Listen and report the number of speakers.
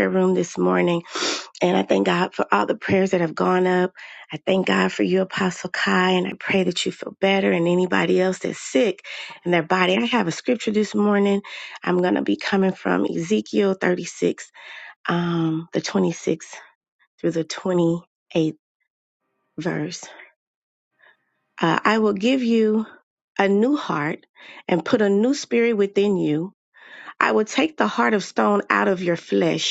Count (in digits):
1